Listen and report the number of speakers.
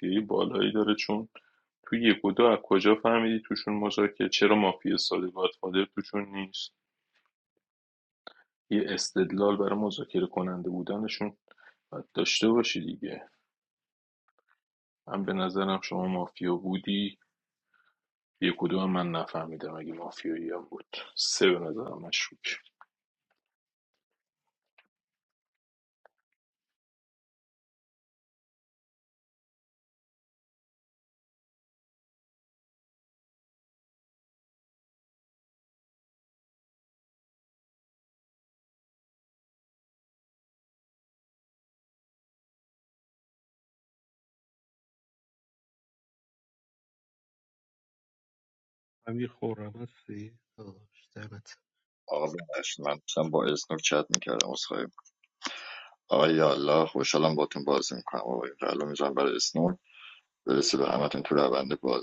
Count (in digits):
3